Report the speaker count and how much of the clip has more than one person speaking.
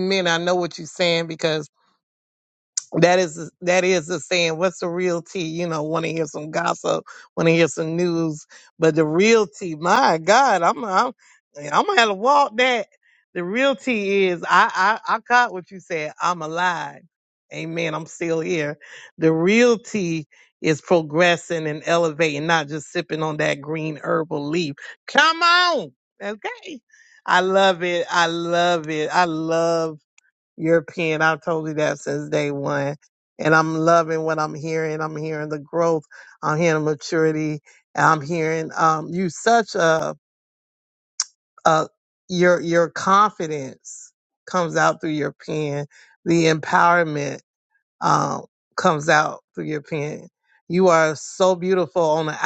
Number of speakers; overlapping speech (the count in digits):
1, no overlap